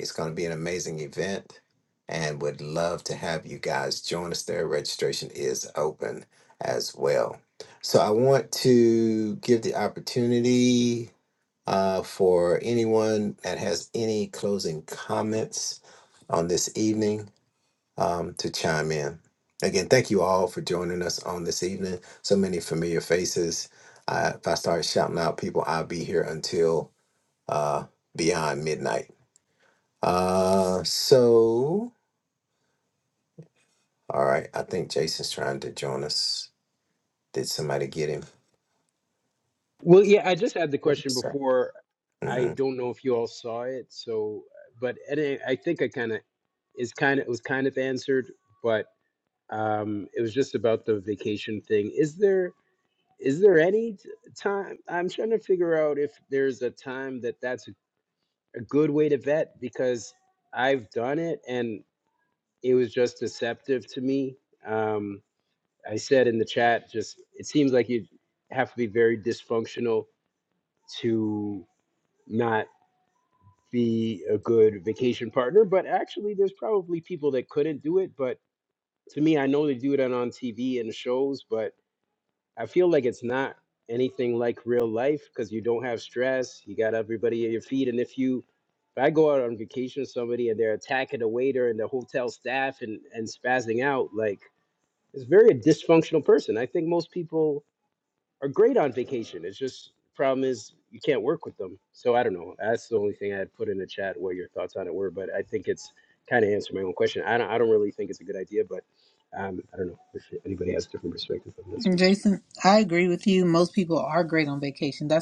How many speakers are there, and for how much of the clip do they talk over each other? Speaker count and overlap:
three, under 1%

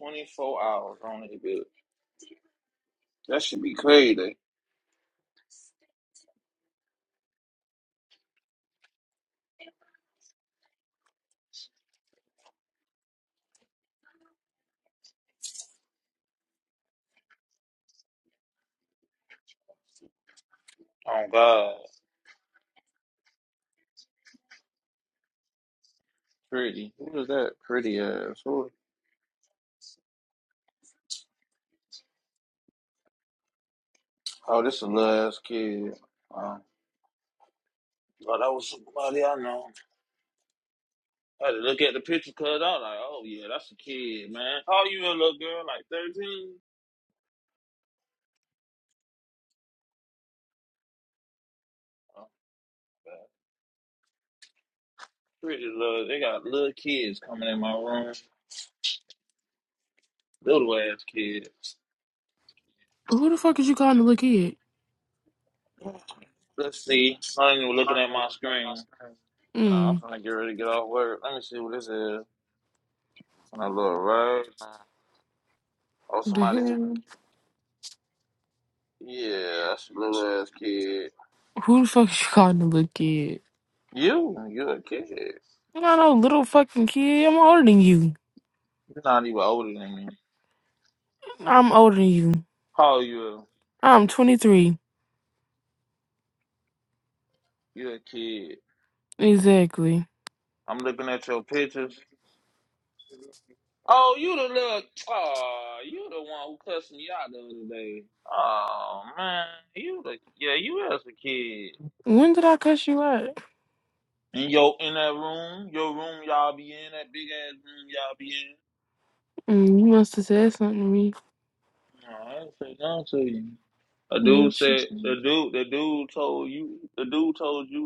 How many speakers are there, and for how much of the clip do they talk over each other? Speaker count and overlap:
two, about 1%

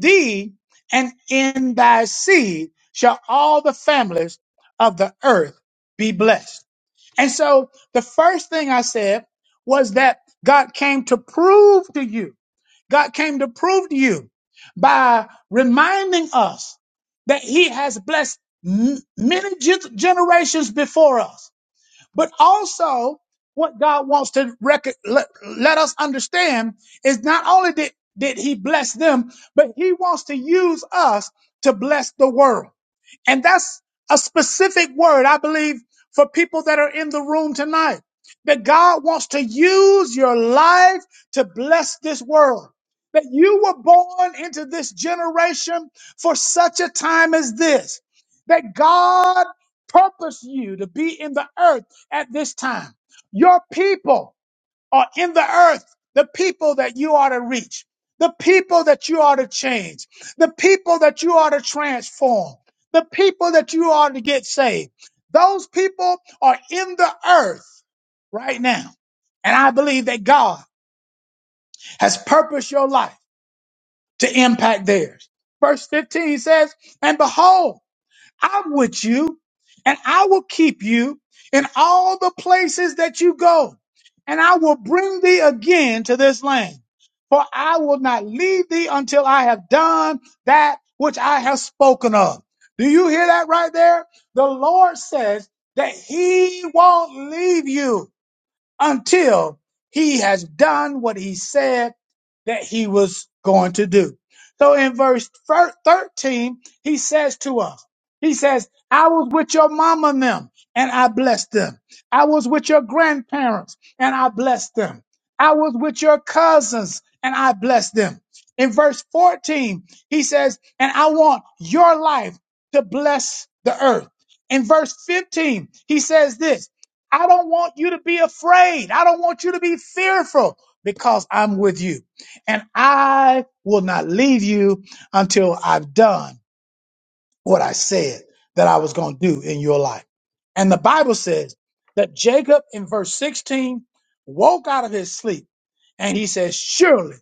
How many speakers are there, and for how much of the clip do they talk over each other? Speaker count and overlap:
one, no overlap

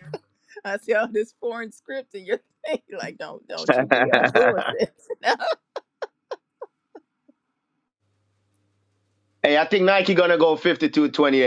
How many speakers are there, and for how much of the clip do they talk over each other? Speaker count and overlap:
two, no overlap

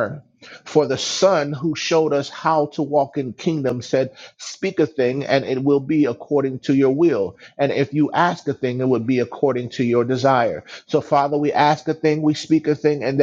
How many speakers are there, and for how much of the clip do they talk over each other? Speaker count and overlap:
one, no overlap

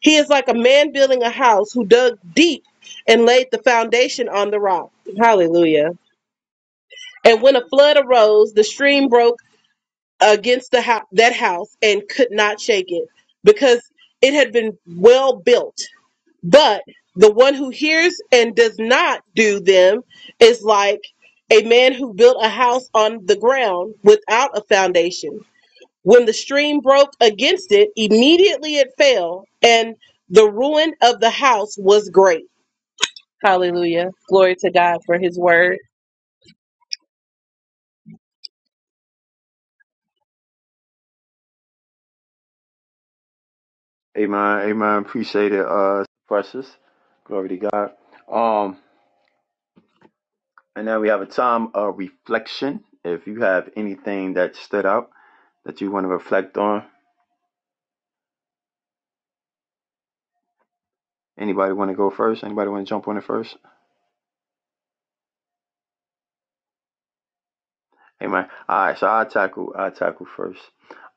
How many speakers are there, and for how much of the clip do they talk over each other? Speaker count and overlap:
two, no overlap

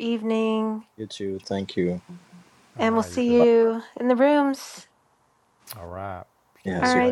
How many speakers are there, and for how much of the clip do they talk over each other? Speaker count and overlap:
three, about 16%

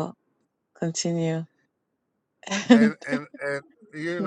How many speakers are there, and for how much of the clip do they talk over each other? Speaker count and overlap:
two, about 5%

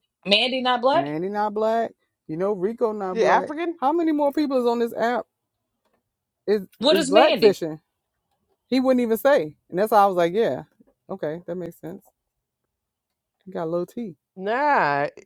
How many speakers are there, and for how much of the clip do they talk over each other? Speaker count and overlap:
three, about 8%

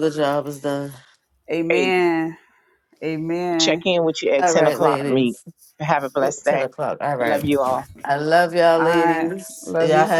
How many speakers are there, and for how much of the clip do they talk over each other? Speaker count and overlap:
three, about 33%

